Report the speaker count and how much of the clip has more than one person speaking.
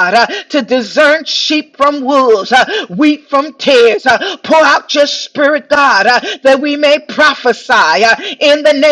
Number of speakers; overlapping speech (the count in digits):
1, no overlap